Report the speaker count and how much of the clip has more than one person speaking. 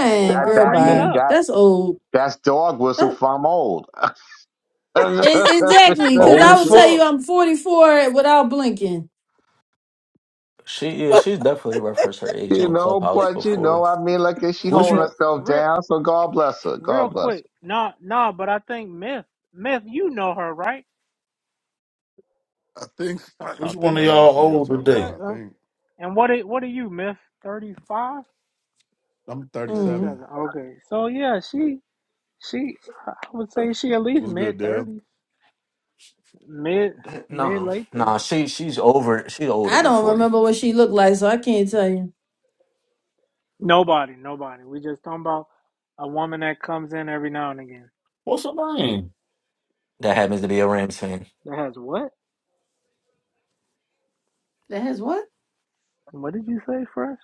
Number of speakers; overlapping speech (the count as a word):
six, about 17%